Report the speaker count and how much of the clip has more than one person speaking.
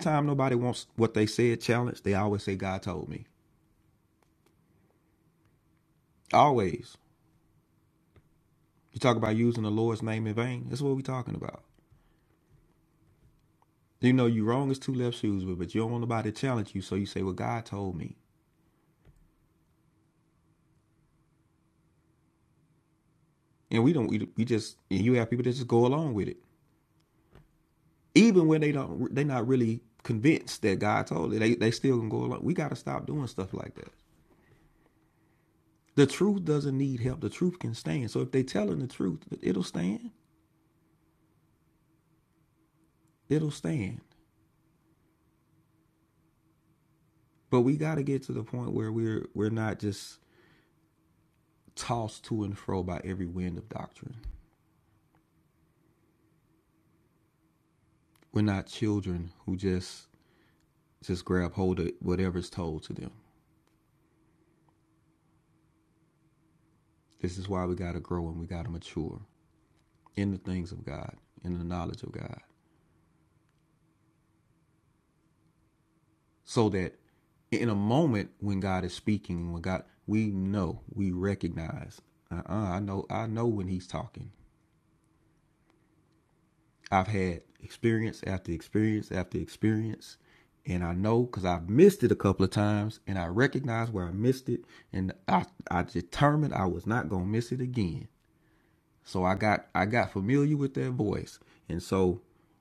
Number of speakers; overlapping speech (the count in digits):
1, no overlap